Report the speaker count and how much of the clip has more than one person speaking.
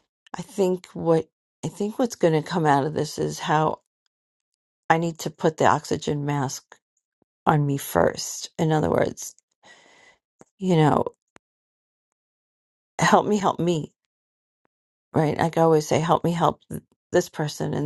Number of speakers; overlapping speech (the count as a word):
one, no overlap